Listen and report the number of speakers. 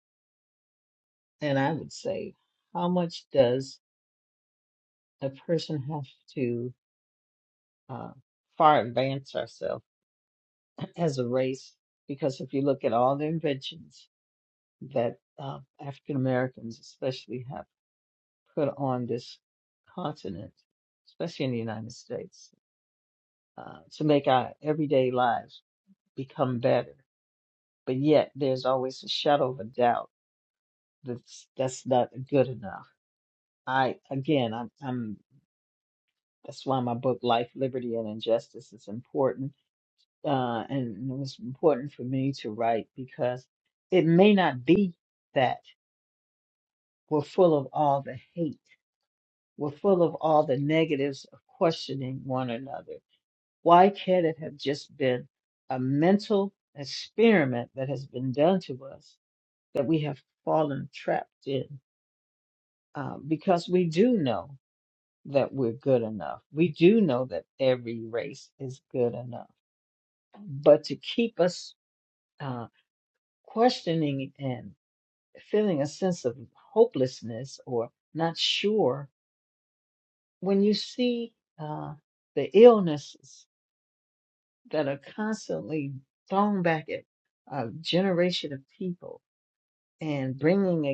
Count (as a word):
one